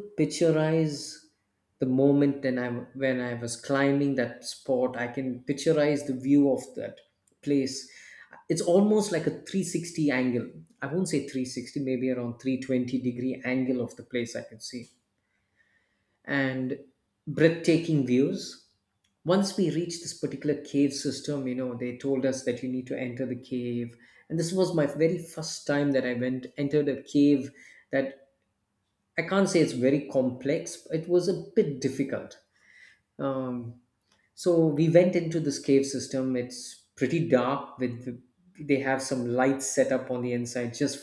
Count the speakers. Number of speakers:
1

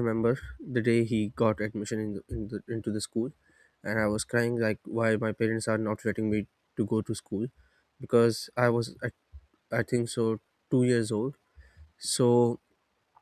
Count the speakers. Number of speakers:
1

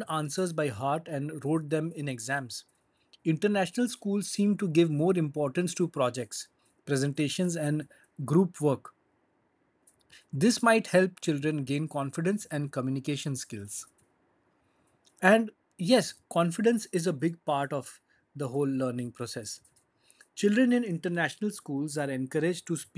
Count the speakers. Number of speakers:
1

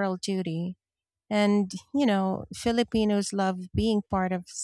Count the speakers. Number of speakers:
1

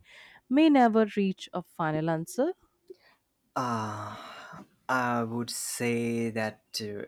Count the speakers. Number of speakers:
2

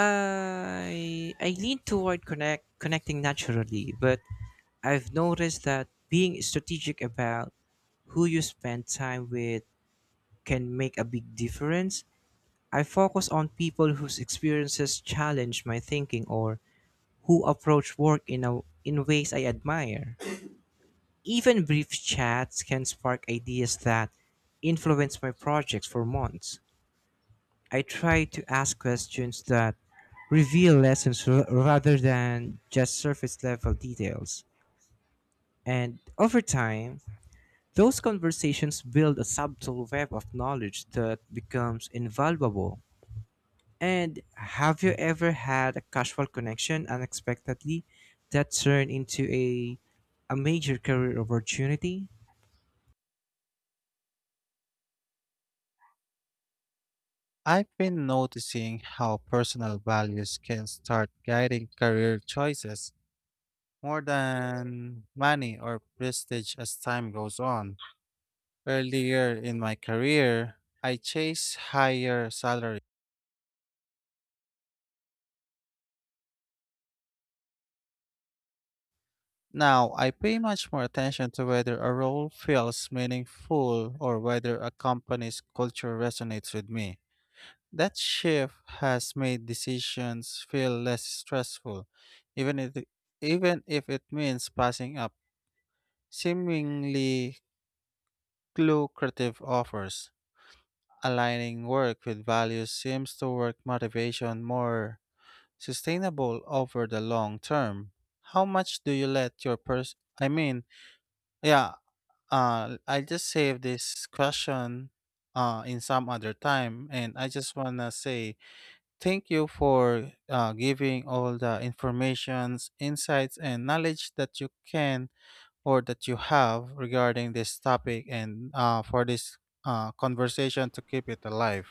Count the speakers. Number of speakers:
2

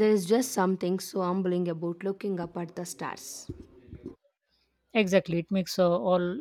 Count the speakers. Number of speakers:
2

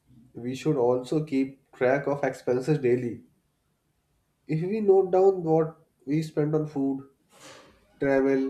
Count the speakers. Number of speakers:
1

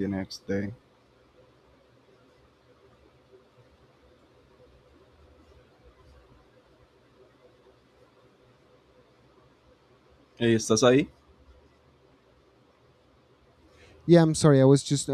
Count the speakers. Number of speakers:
2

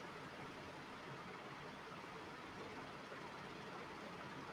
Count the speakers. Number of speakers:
0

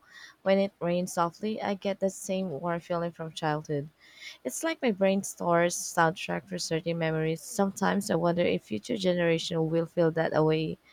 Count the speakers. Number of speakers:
1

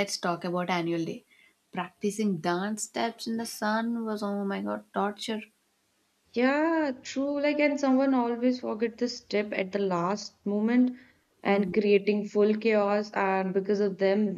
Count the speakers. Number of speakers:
2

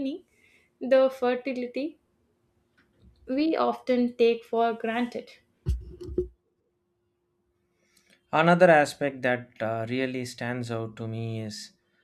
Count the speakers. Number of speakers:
2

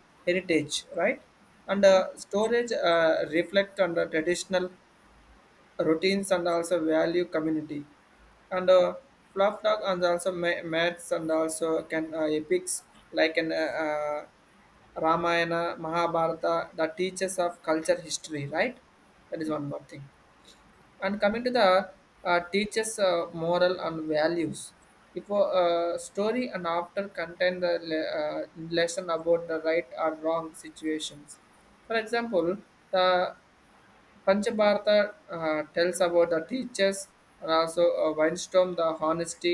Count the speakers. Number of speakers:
1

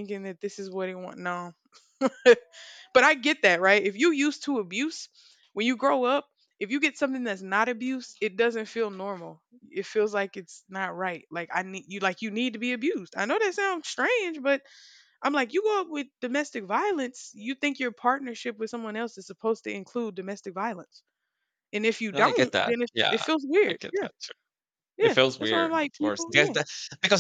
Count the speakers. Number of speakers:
2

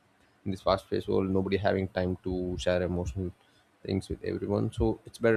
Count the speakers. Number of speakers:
1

